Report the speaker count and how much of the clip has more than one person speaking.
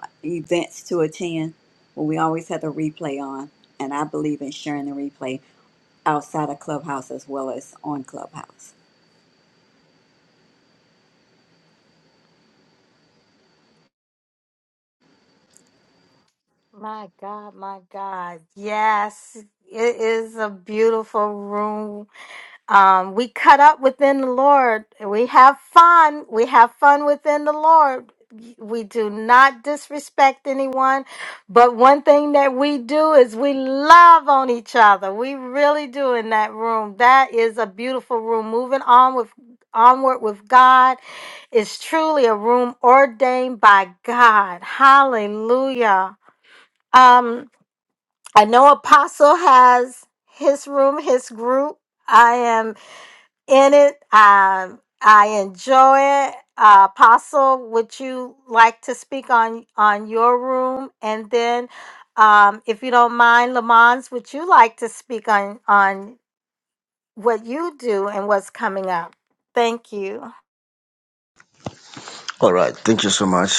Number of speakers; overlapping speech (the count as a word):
three, no overlap